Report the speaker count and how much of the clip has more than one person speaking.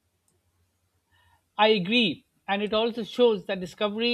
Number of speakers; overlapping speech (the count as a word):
one, no overlap